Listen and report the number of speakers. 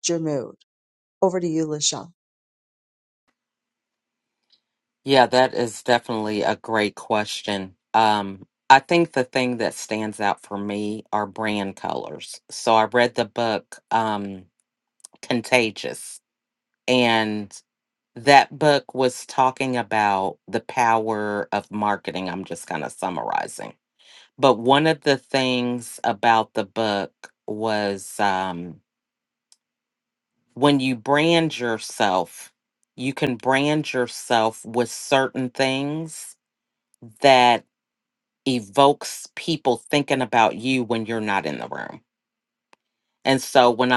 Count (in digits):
2